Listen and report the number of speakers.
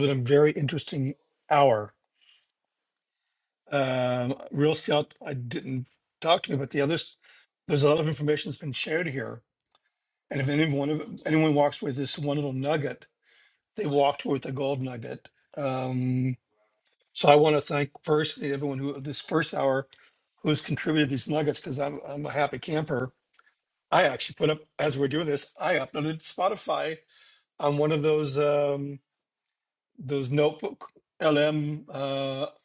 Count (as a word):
one